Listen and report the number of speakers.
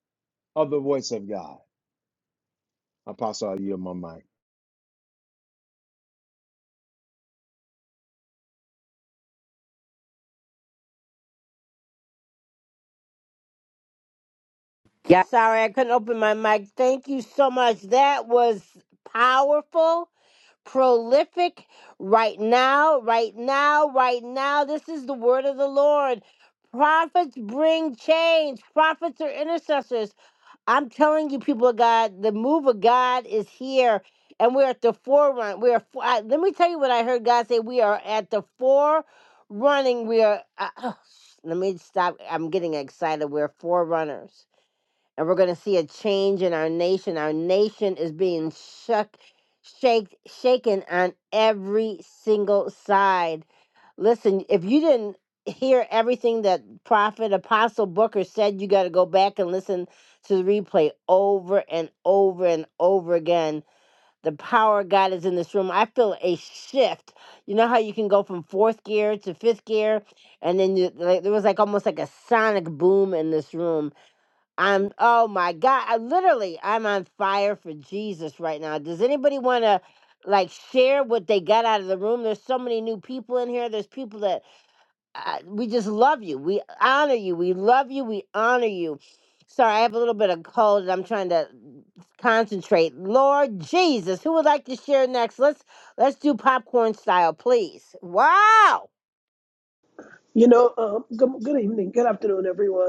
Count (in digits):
3